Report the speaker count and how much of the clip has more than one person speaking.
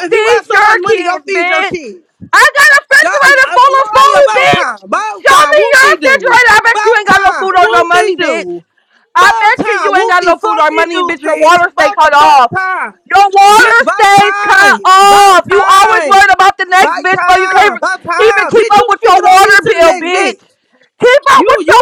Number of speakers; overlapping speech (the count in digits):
2, about 72%